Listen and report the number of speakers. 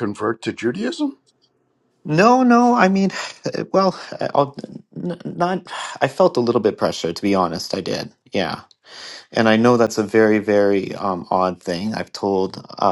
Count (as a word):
two